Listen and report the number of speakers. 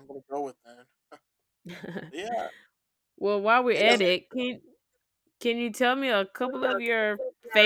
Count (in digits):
2